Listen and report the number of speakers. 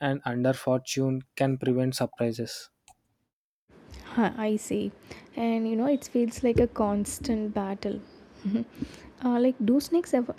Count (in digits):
2